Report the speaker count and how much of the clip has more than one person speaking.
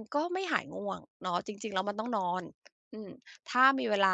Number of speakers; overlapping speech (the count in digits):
1, no overlap